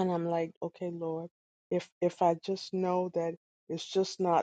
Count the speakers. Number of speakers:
one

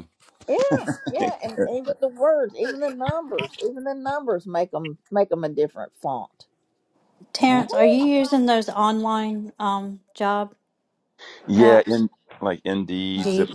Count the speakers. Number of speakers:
three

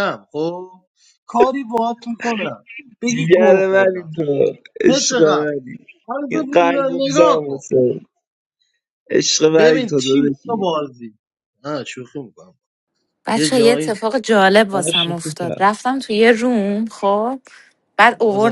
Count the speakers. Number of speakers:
three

